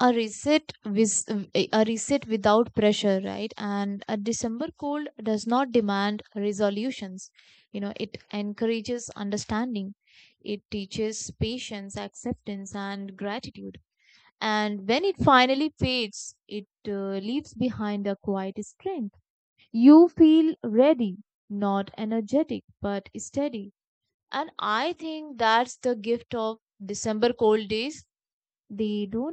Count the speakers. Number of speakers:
one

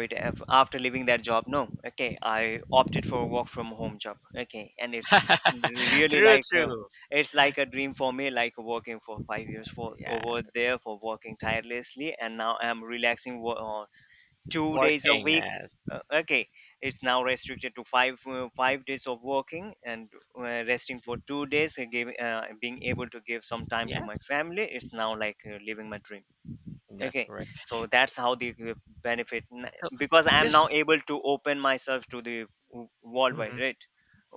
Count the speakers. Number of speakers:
two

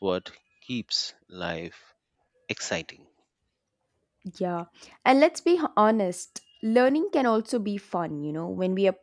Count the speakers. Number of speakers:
two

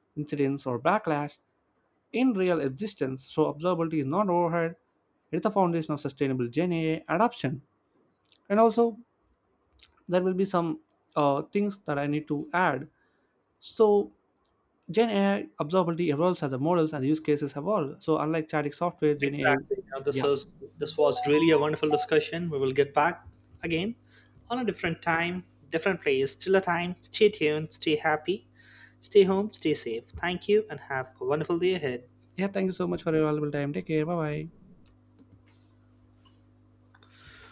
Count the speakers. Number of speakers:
two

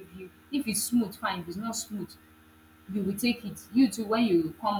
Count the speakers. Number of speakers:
one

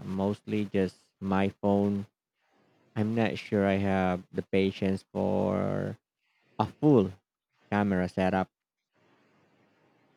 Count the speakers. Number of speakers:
one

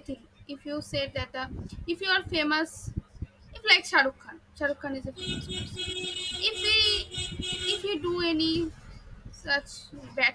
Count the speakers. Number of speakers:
one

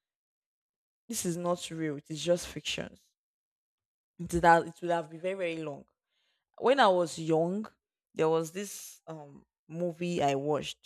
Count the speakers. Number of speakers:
one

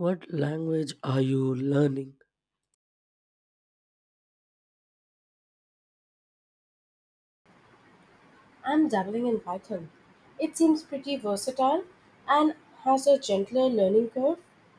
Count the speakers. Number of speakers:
two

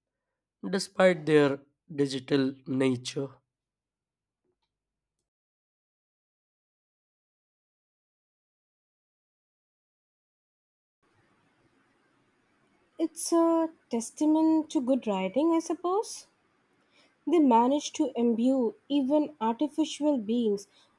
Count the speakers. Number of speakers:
two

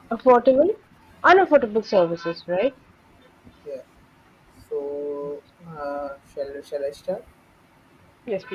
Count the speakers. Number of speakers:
two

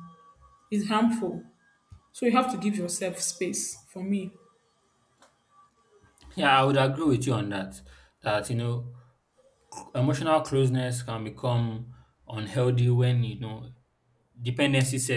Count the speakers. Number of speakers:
two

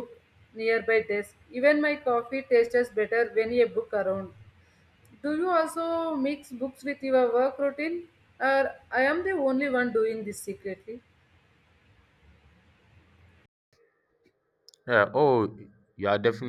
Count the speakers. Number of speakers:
two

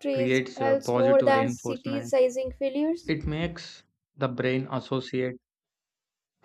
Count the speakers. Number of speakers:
two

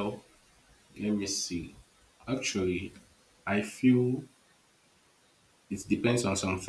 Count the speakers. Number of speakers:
one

